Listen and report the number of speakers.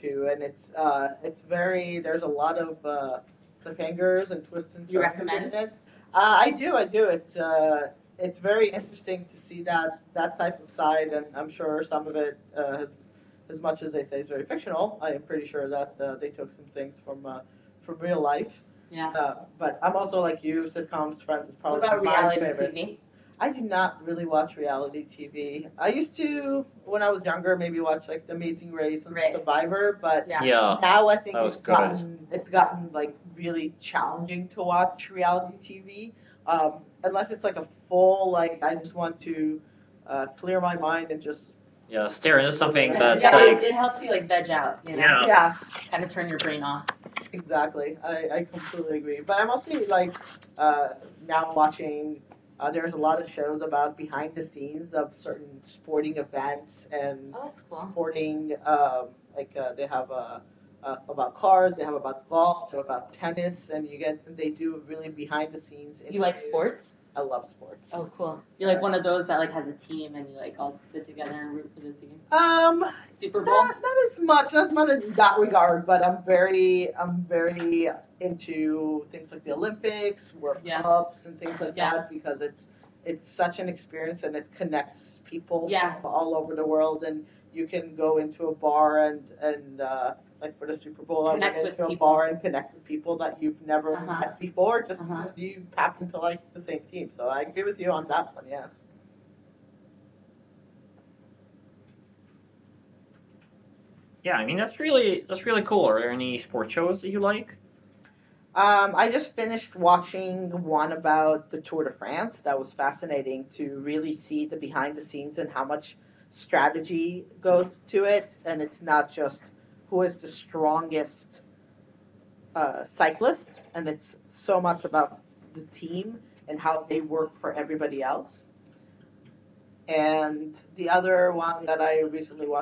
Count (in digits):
3